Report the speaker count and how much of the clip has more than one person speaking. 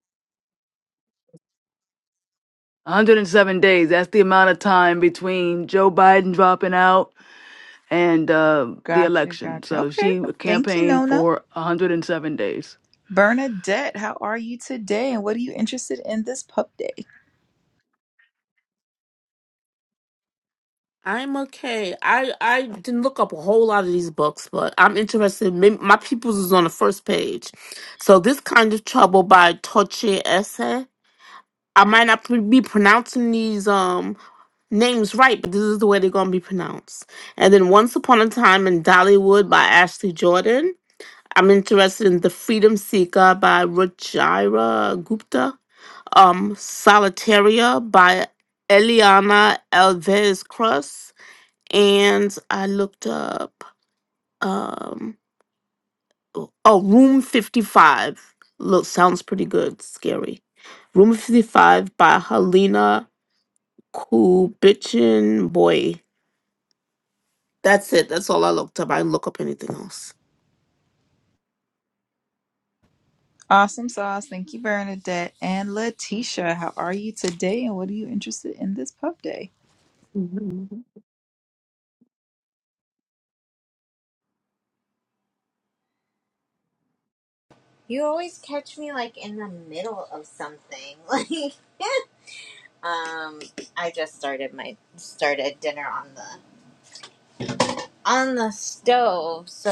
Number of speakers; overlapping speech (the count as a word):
four, about 2%